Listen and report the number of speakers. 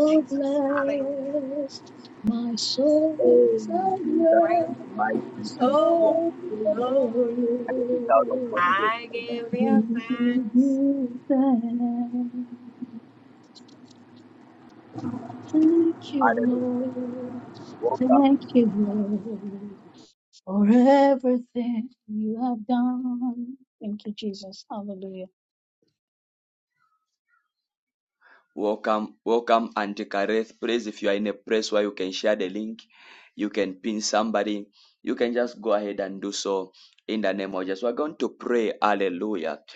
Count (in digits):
3